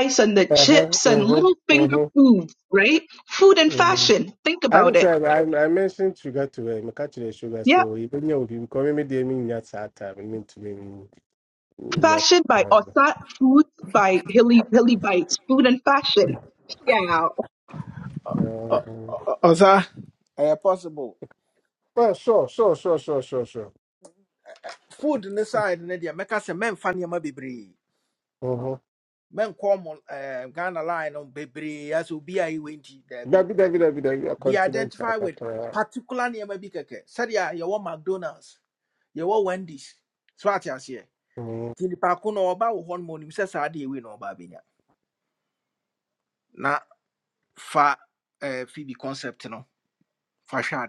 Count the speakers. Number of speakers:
3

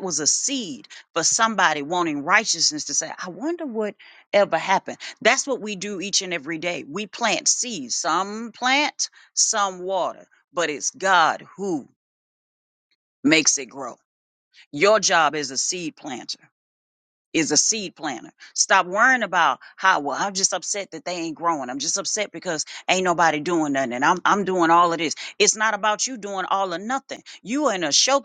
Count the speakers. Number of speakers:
1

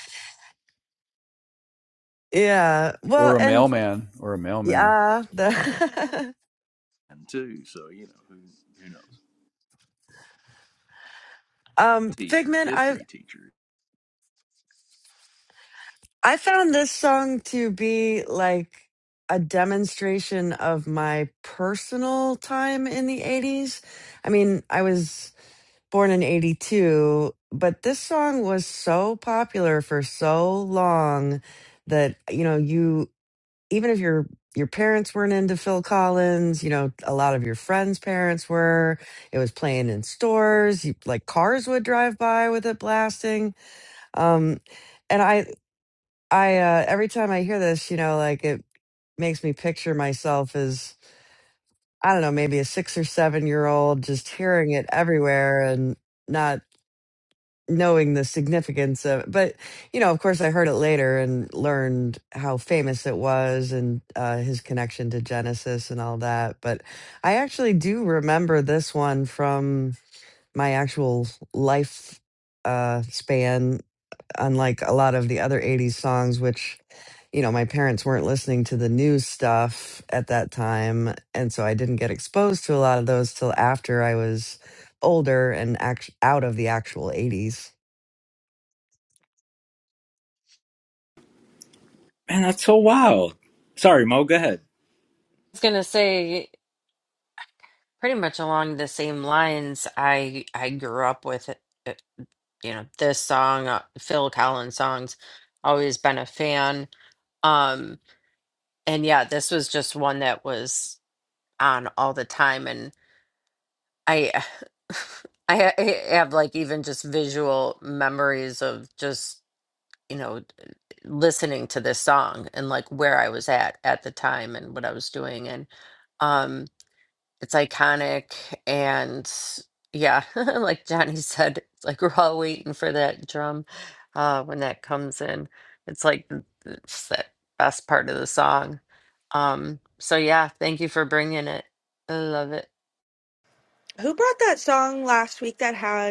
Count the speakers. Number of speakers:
6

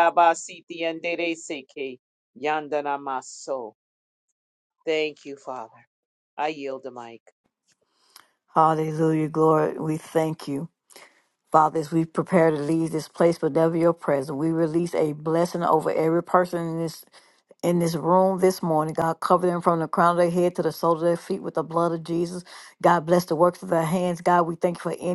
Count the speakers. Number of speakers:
2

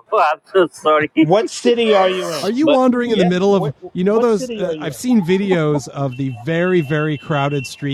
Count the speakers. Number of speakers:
3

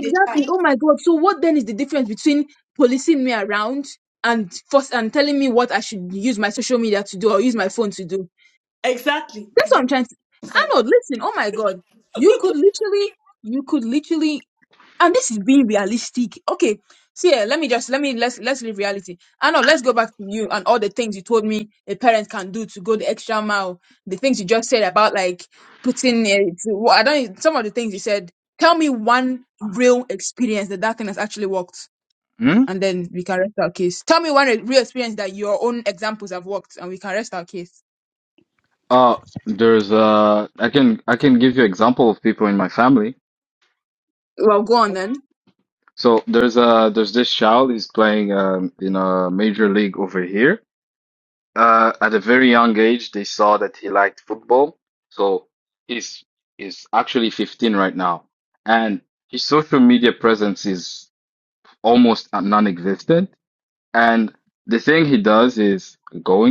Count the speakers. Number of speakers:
3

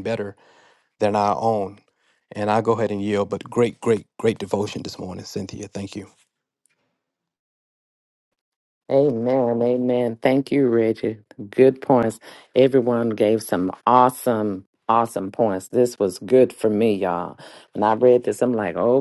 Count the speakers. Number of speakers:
2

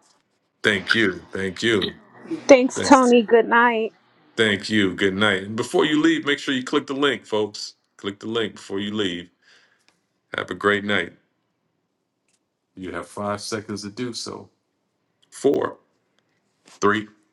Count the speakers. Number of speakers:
2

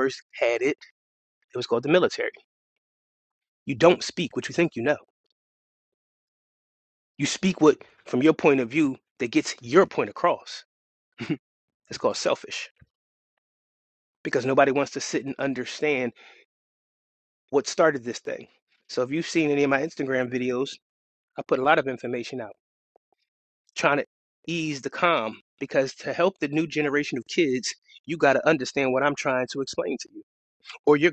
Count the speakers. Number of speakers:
1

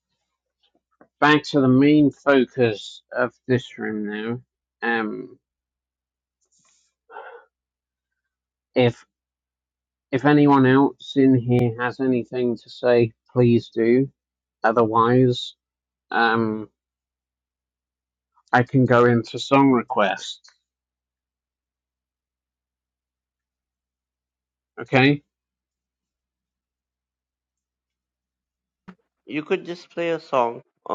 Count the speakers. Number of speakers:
2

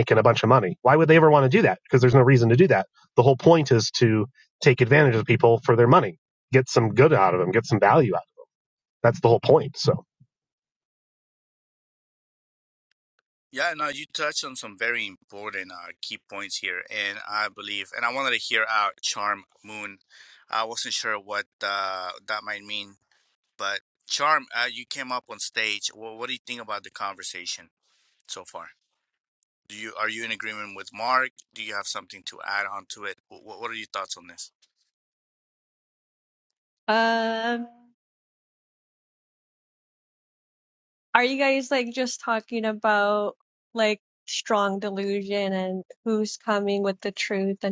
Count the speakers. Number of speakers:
3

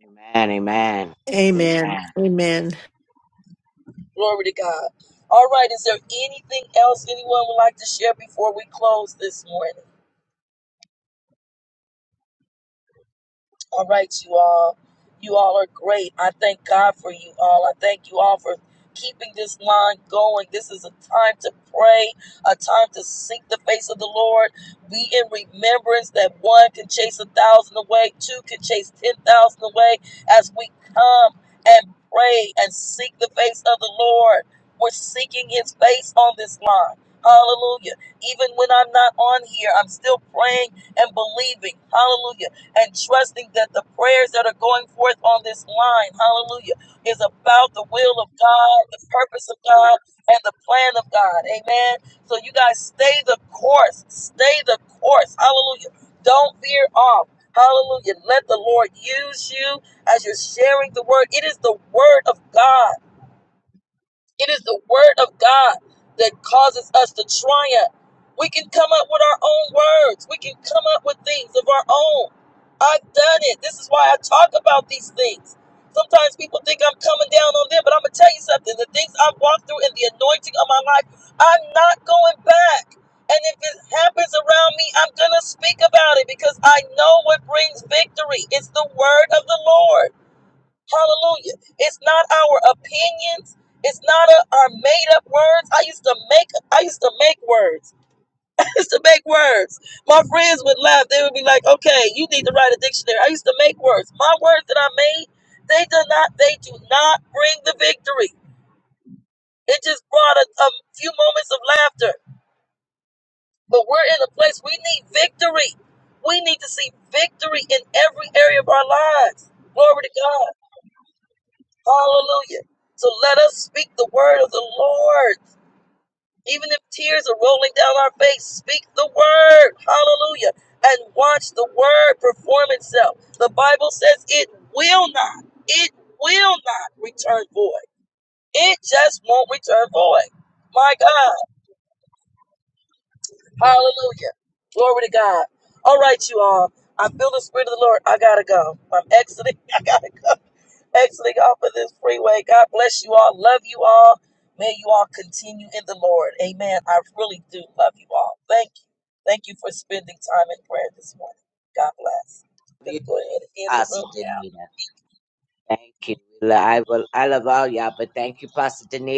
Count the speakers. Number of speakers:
3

